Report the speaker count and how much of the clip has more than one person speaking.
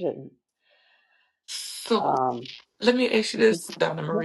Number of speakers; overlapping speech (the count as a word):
two, about 13%